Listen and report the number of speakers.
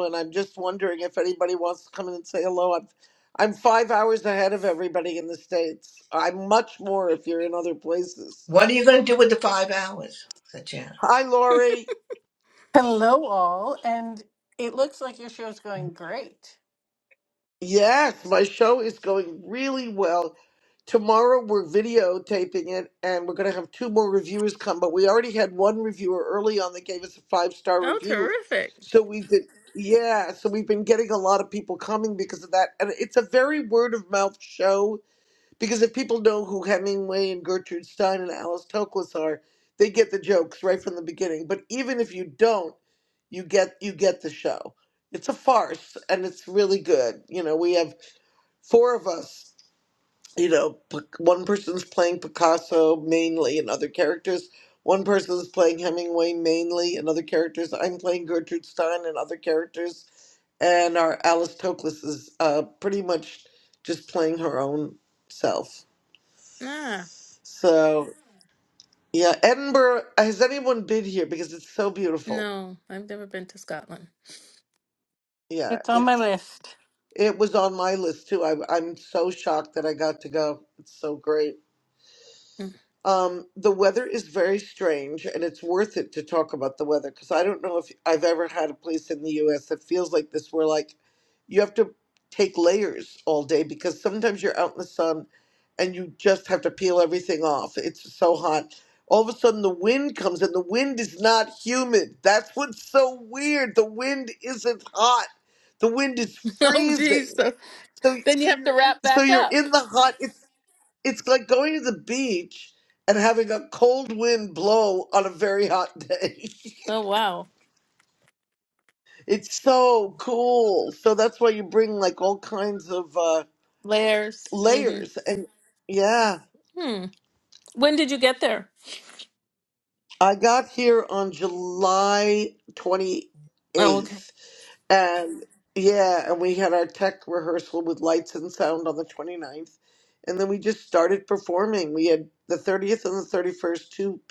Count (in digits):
4